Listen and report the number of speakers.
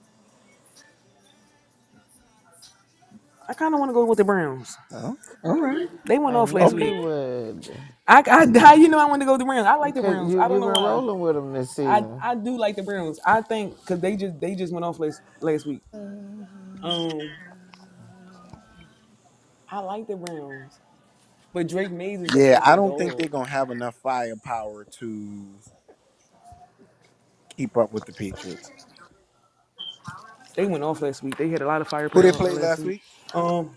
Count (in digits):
3